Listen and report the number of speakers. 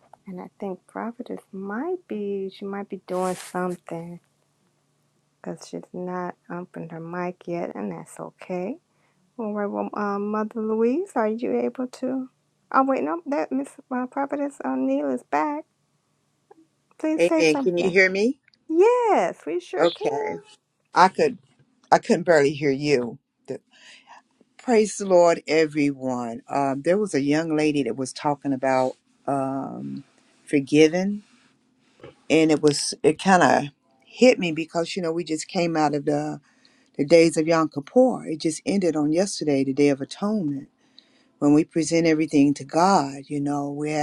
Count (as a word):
two